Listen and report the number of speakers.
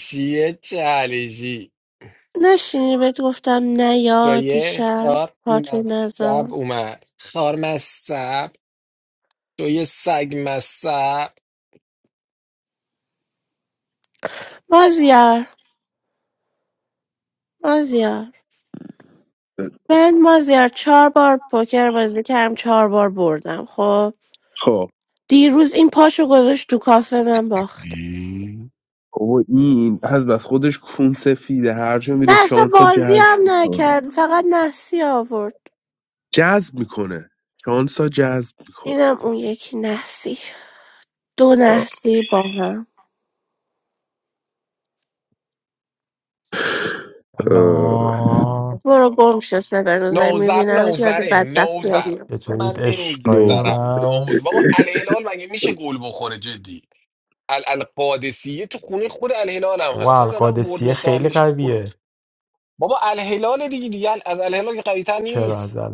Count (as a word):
four